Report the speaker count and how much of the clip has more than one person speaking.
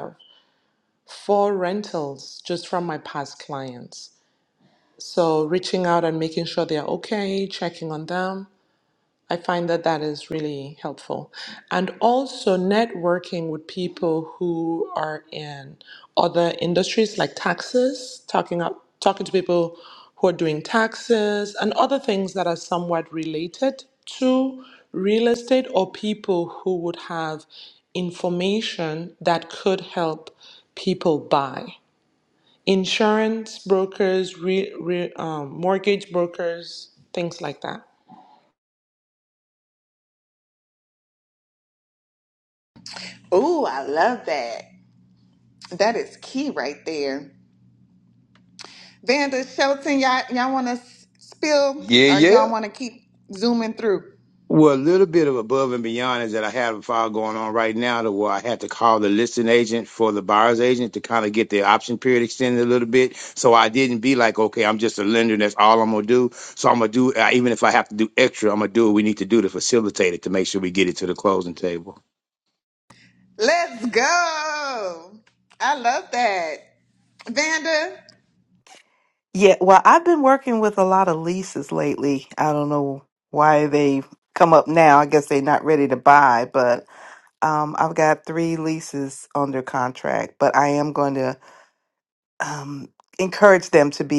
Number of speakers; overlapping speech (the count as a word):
four, about 1%